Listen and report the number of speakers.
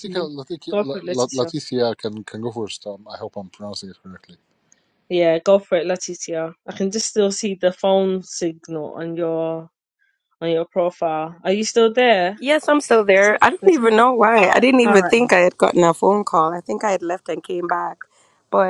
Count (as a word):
three